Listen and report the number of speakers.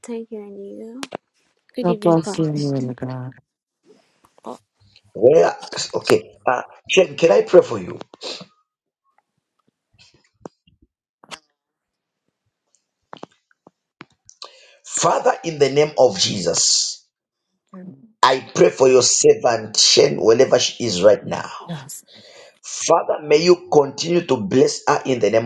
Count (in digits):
3